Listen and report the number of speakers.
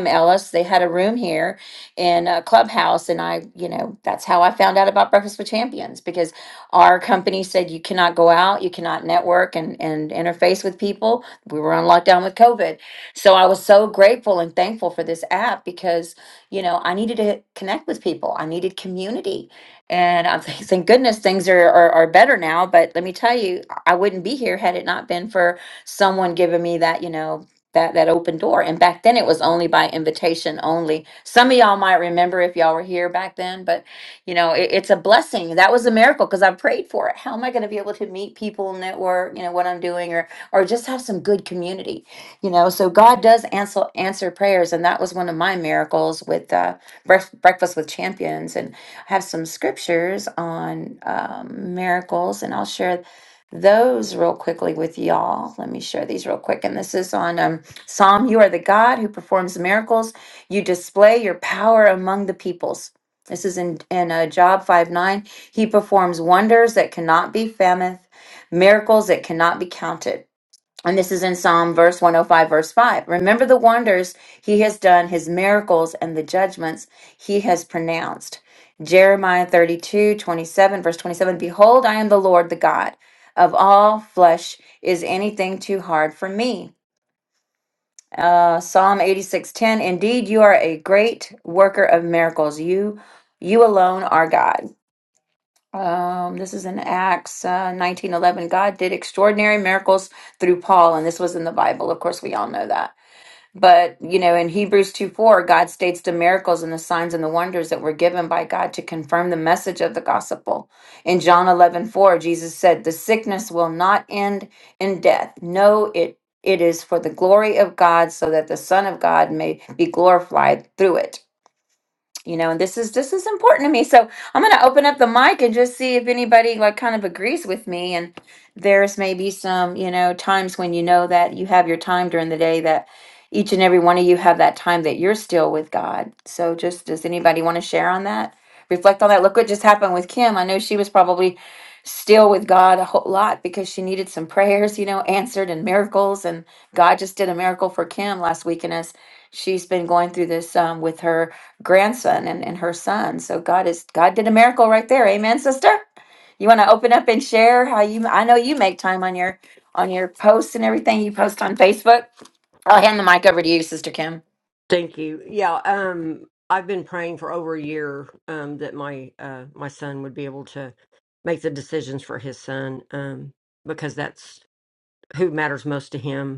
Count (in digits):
2